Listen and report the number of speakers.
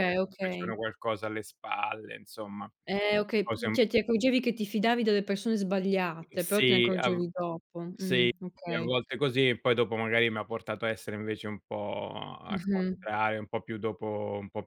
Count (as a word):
two